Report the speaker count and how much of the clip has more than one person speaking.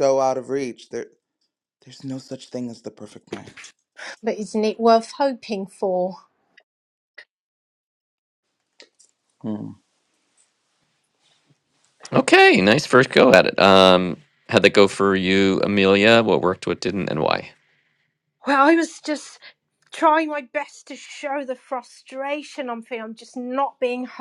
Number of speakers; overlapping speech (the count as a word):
three, no overlap